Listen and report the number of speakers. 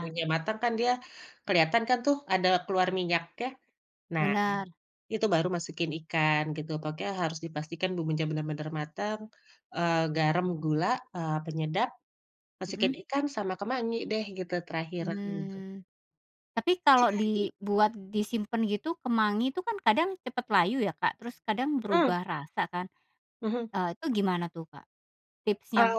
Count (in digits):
2